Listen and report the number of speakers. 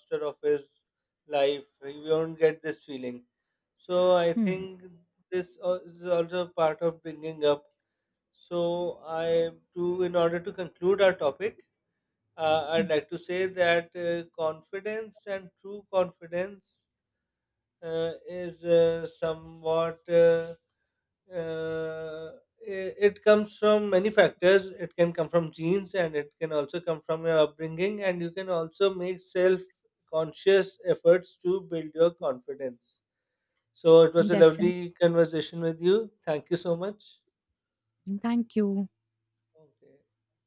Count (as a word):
two